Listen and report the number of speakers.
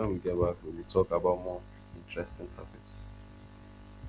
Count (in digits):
1